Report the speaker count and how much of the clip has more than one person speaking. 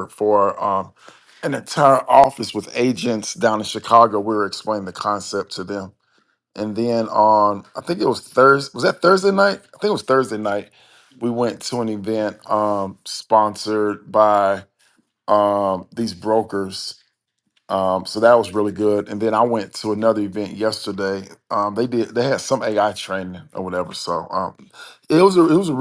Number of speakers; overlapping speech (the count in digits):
1, no overlap